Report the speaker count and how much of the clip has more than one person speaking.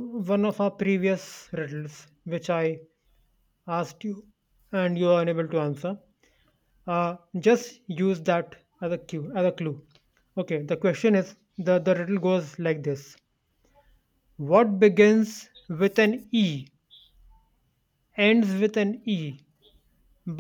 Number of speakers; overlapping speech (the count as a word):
one, no overlap